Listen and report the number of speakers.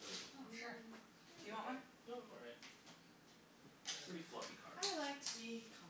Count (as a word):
three